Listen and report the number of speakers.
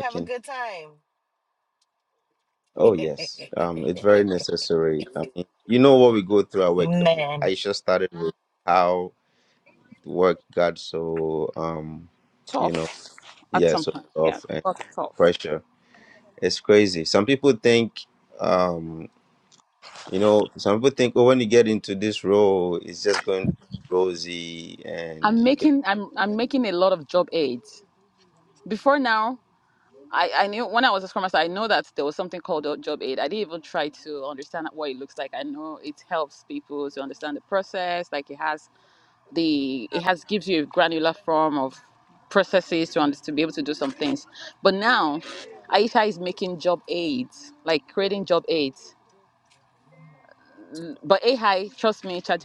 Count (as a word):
three